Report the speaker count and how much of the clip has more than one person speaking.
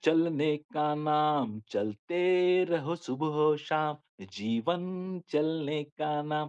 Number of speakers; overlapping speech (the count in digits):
1, no overlap